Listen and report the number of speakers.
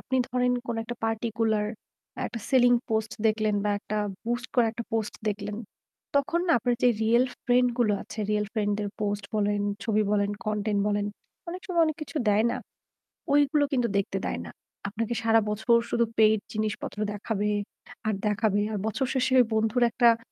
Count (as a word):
one